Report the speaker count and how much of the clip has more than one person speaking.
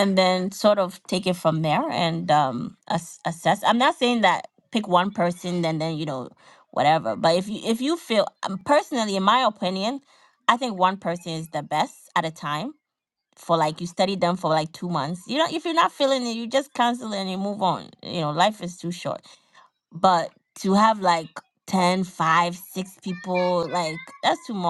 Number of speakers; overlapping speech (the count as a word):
one, no overlap